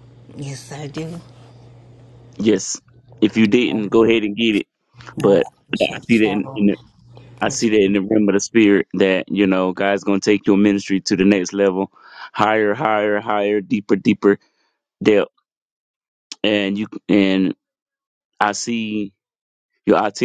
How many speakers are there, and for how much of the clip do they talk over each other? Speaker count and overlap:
2, about 7%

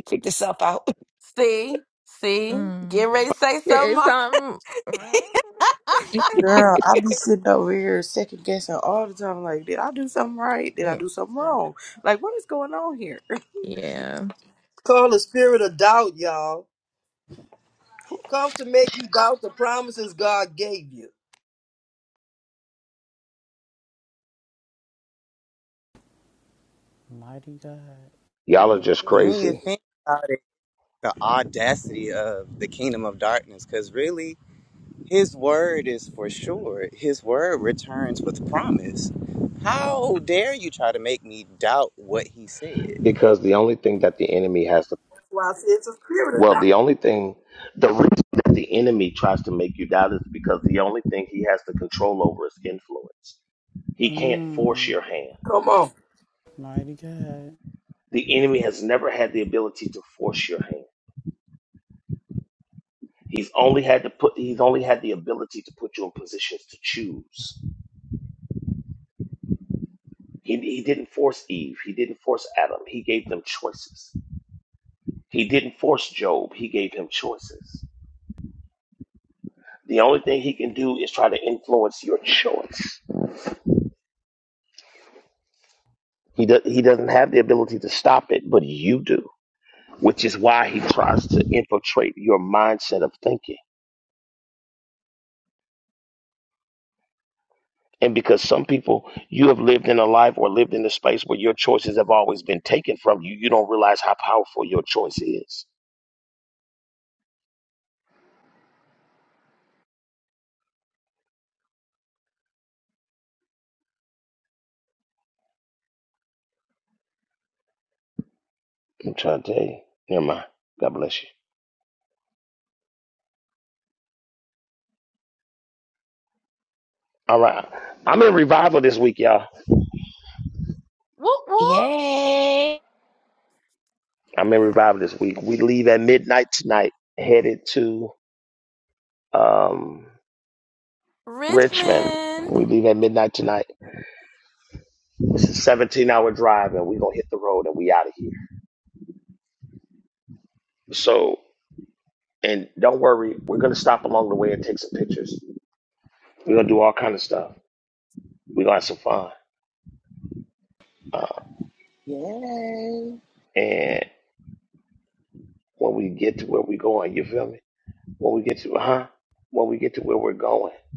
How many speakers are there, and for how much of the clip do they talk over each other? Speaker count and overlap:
9, about 2%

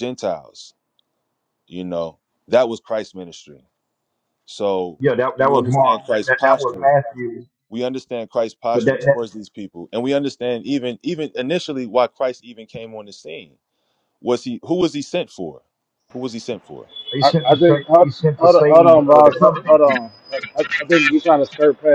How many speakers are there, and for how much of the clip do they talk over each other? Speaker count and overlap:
3, about 22%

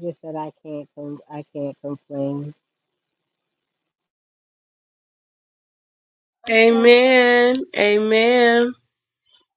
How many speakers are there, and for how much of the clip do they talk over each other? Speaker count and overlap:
2, no overlap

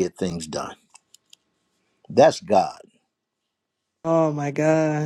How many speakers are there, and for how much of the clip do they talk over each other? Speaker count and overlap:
2, no overlap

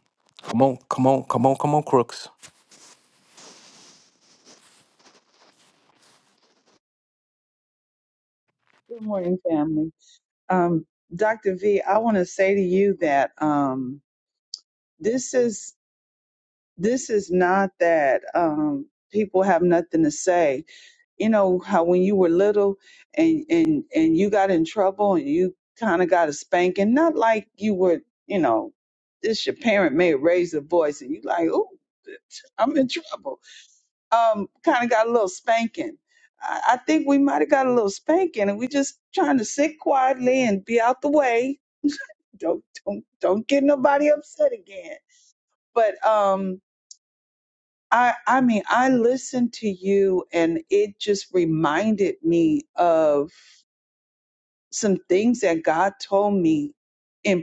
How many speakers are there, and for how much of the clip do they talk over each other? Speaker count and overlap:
2, no overlap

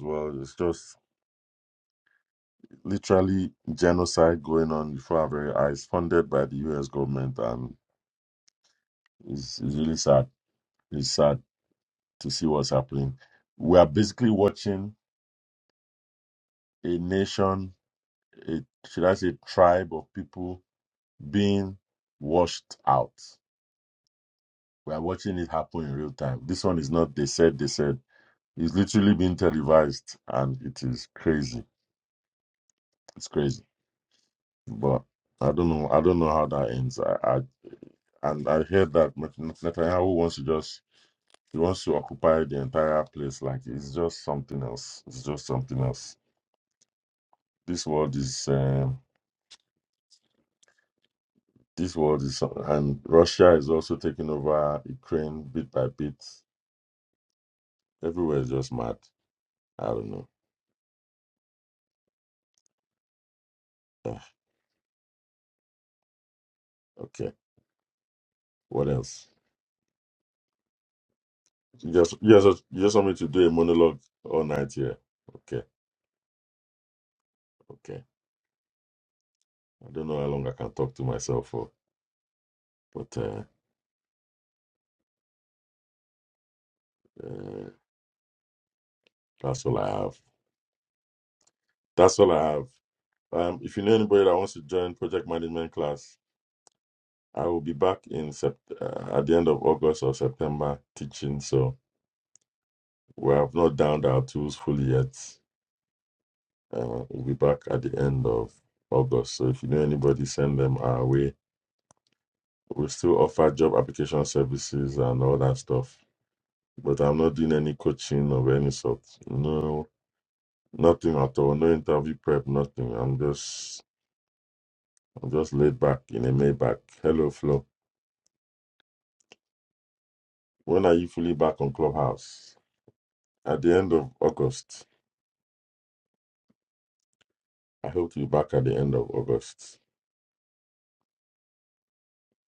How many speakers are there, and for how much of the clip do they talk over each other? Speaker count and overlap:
1, no overlap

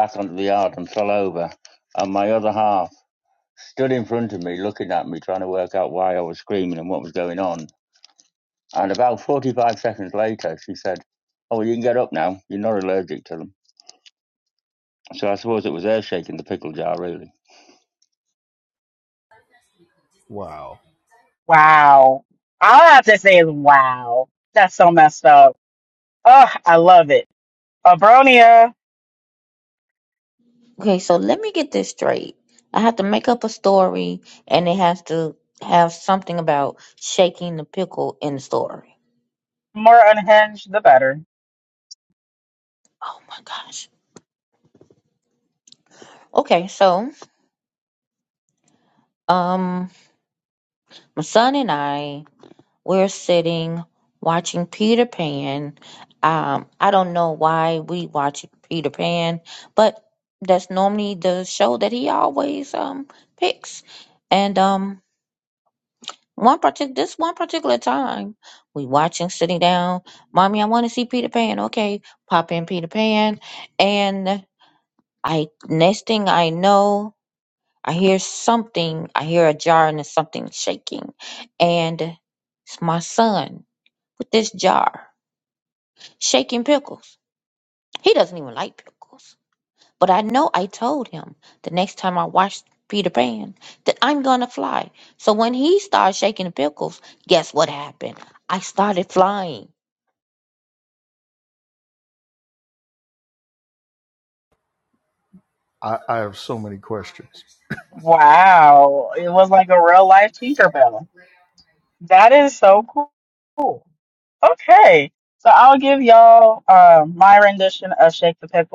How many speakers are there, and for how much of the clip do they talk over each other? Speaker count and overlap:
4, no overlap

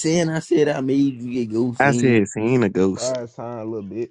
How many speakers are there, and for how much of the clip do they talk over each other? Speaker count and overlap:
3, about 6%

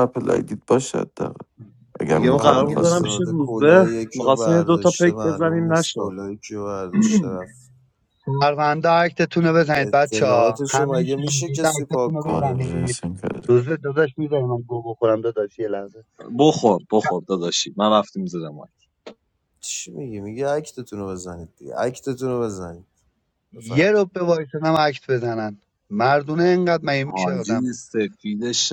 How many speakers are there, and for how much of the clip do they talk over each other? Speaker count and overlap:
4, about 27%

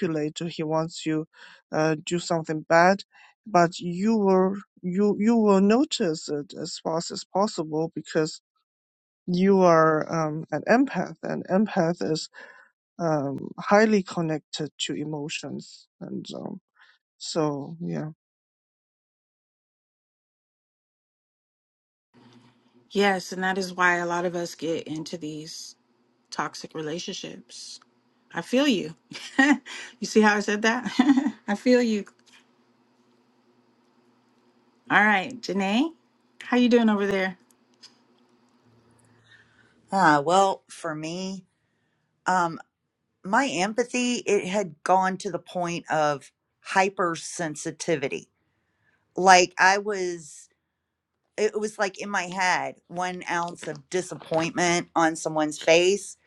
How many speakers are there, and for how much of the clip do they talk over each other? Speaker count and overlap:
3, no overlap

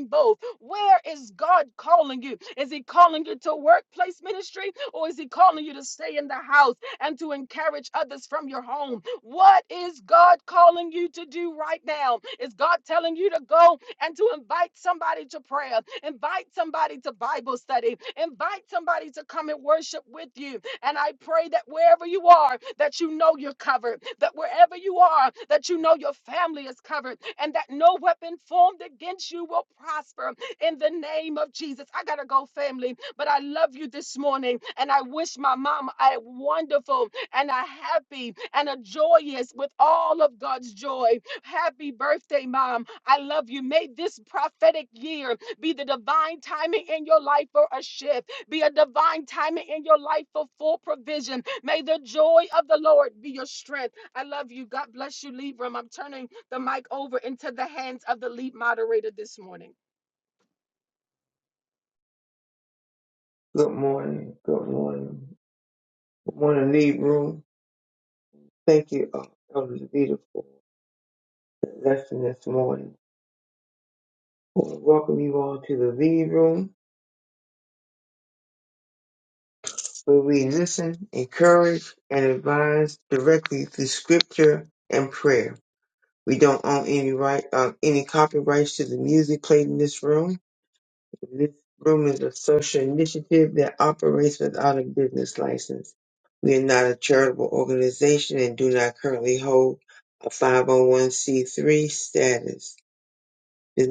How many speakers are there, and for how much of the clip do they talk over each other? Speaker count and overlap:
2, no overlap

